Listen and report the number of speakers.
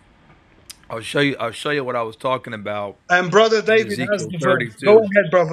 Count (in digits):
2